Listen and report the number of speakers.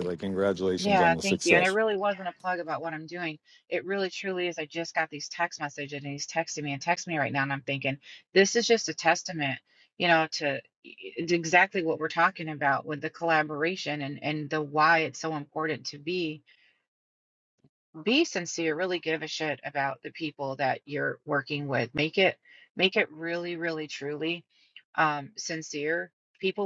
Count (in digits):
2